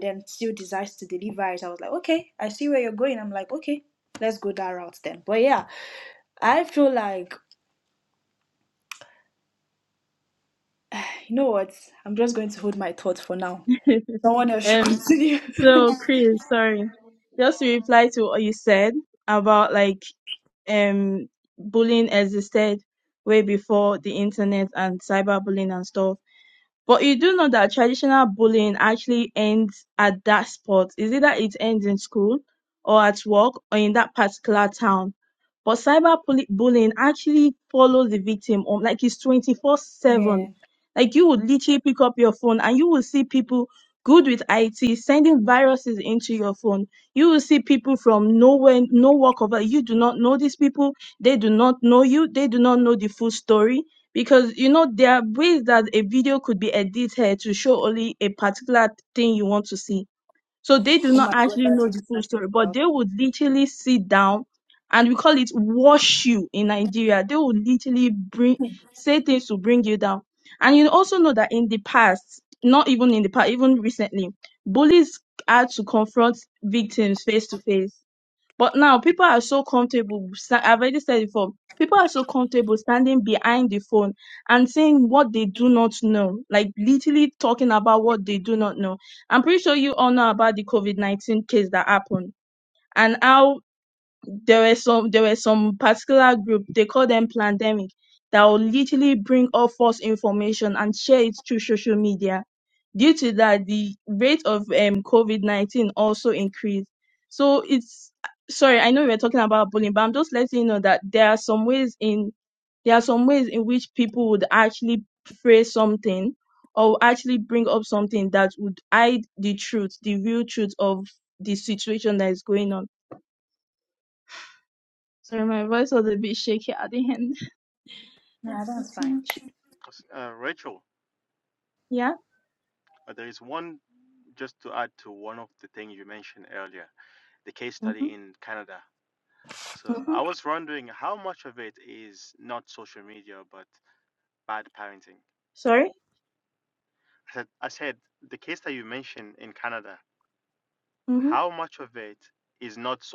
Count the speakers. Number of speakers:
3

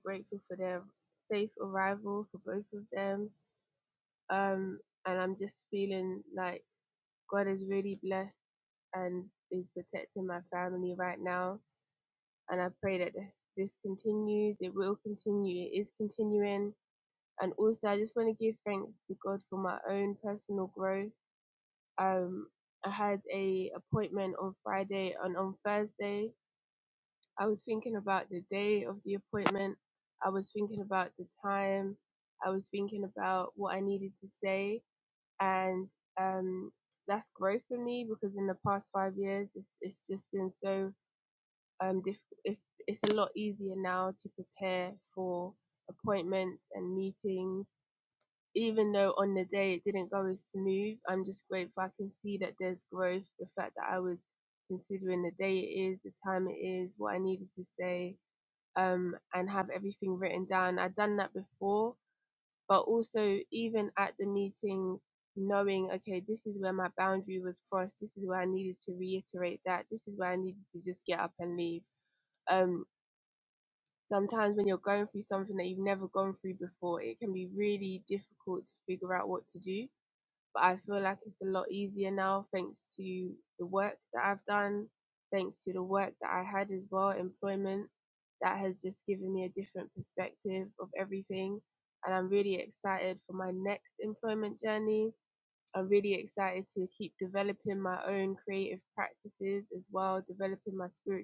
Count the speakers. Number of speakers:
1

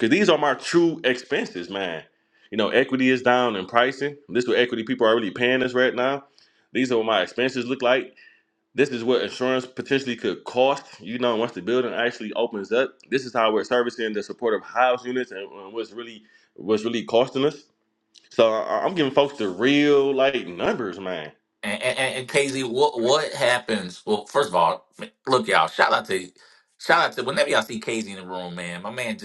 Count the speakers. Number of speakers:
2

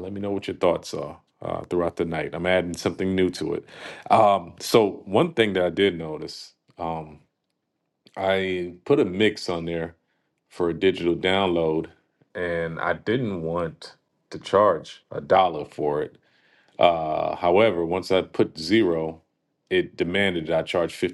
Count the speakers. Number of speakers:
1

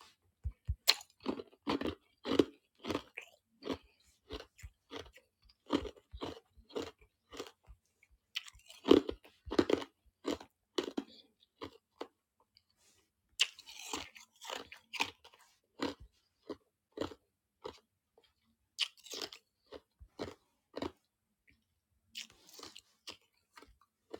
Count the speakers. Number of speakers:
0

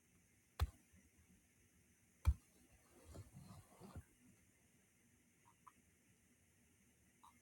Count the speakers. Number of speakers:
0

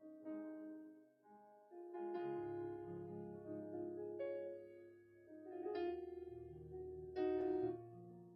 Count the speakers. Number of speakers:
0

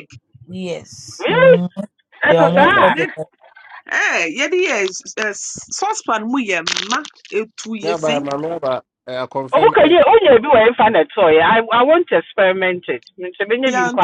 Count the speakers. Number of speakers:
4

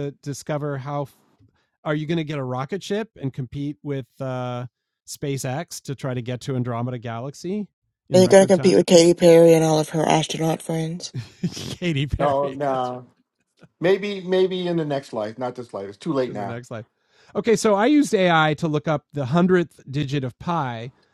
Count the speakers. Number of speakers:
3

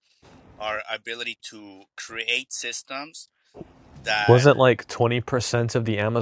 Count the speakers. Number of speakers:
2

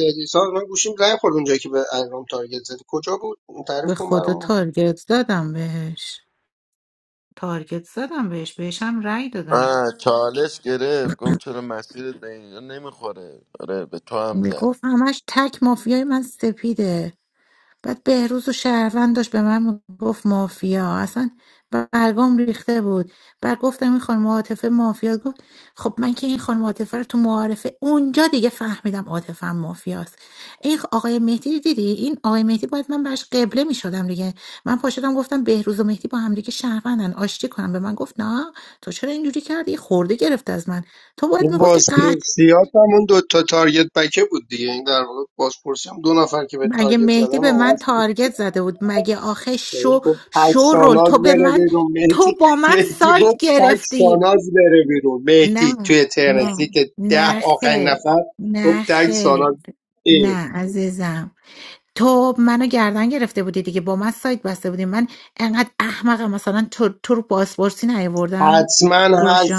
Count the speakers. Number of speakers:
3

